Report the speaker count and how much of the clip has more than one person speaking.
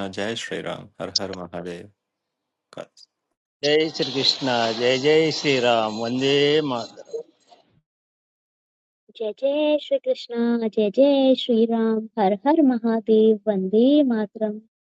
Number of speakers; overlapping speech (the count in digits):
3, no overlap